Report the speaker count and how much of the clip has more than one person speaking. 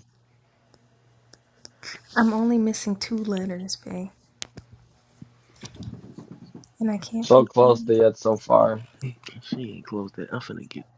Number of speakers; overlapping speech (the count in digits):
3, about 5%